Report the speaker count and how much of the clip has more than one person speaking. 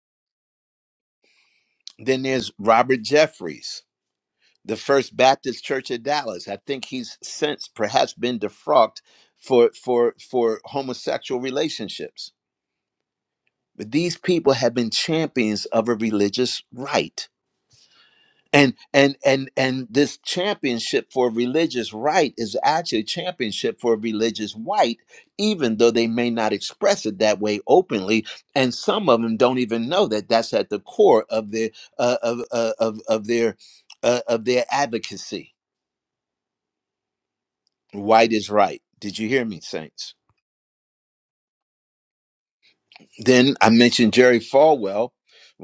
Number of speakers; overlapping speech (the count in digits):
1, no overlap